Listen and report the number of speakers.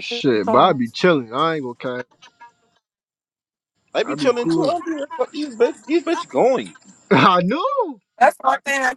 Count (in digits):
3